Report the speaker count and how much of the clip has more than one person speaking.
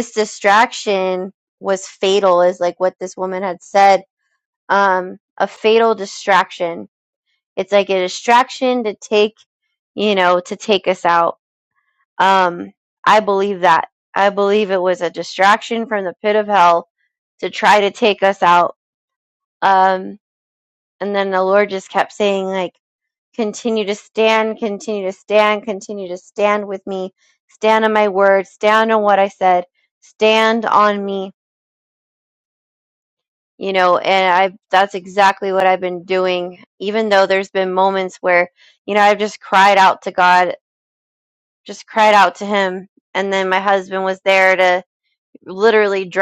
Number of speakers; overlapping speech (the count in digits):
1, no overlap